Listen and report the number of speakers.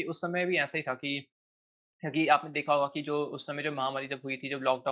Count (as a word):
one